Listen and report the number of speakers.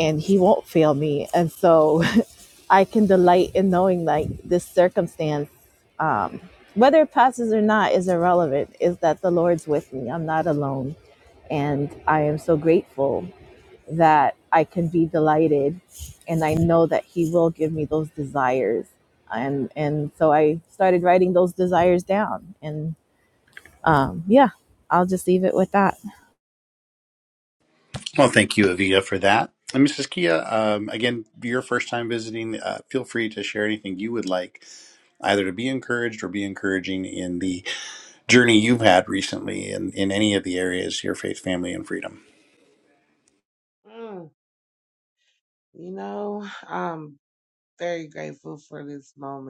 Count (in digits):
3